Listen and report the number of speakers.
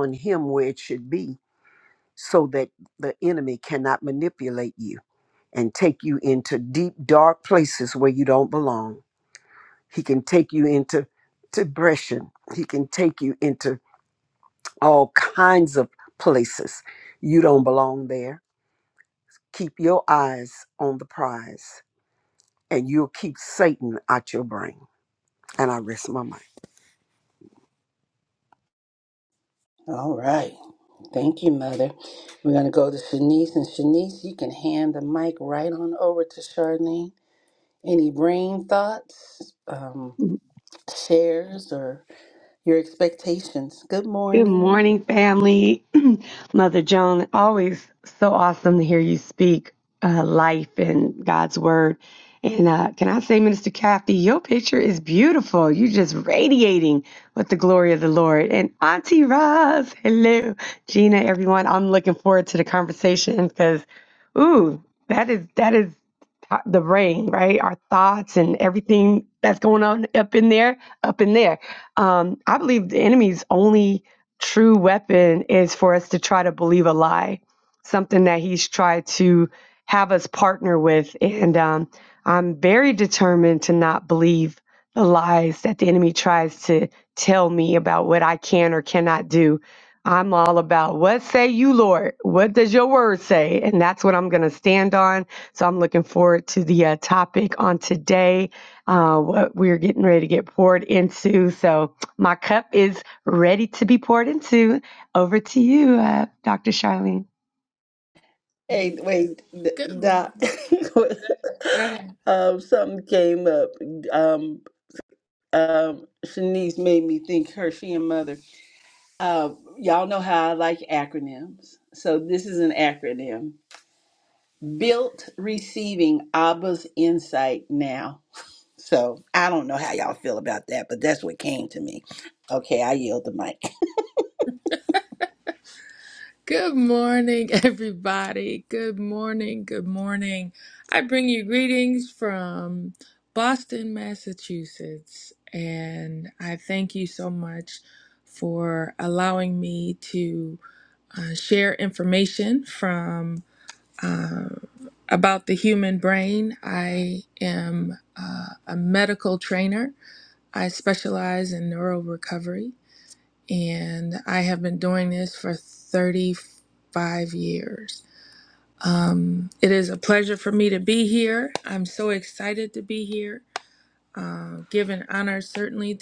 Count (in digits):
4